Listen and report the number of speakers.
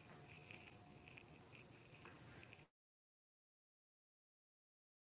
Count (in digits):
0